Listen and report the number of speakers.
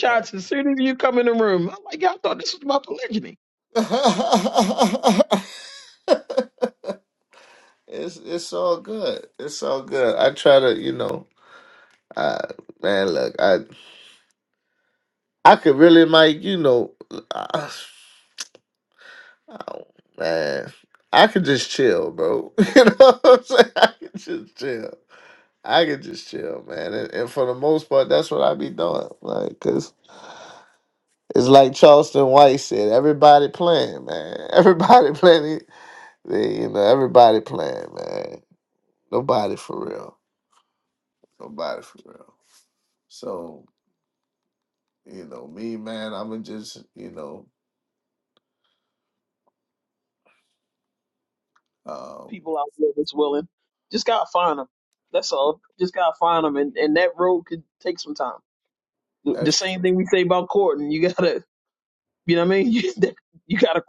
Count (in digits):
2